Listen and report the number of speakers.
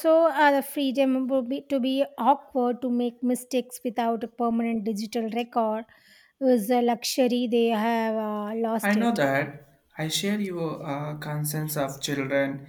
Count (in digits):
2